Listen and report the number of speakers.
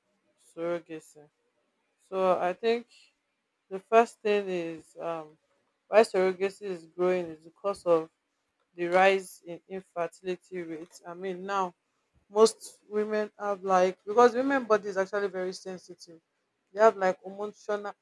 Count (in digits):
1